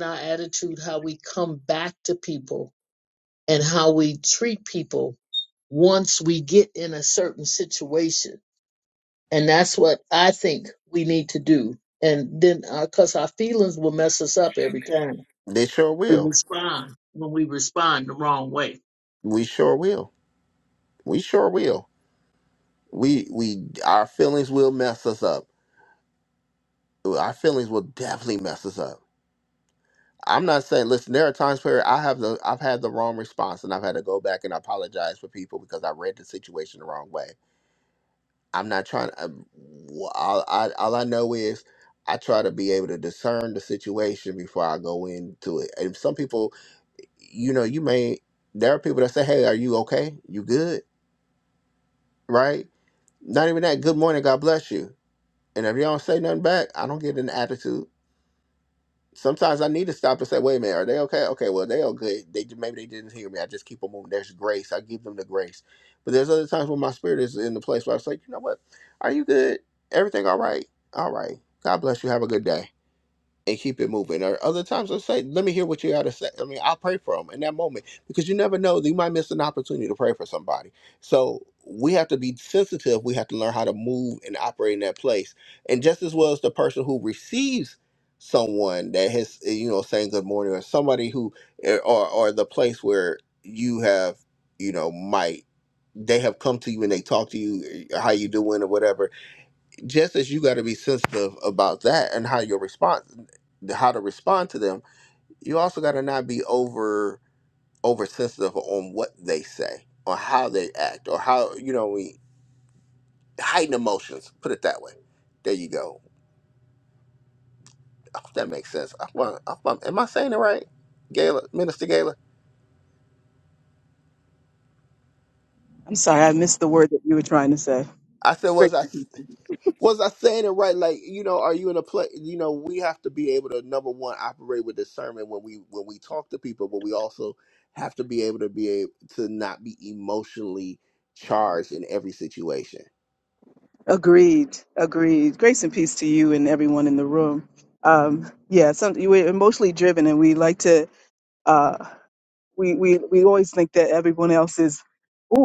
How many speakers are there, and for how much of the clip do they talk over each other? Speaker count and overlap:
3, under 1%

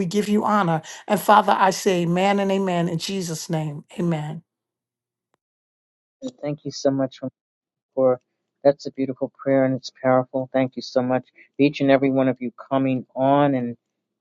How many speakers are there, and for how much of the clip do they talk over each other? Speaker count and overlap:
2, no overlap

